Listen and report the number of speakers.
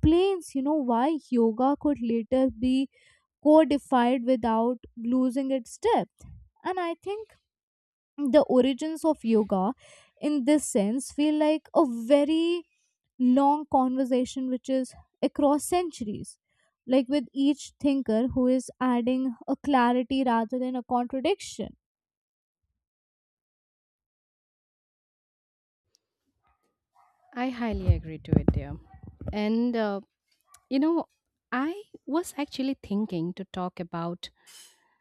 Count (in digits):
2